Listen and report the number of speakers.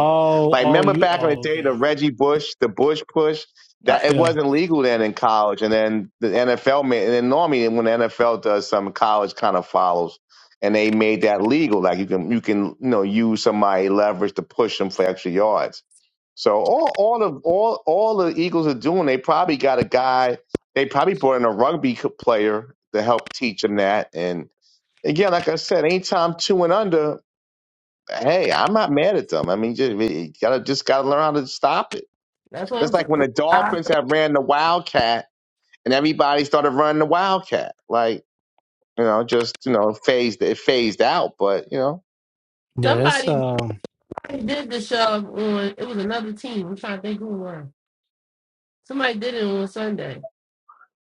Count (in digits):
3